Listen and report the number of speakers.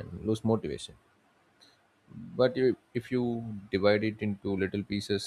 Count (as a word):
one